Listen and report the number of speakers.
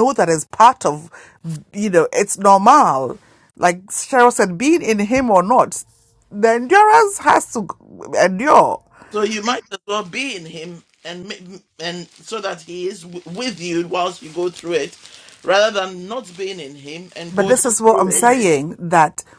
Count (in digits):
2